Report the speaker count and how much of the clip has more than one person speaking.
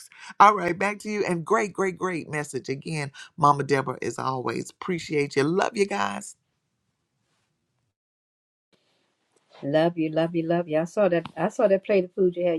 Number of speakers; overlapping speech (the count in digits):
2, no overlap